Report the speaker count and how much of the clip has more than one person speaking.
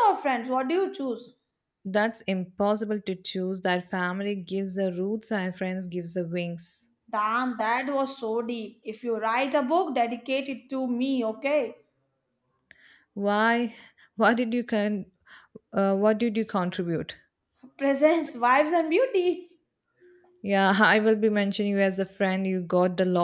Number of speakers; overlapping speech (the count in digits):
2, no overlap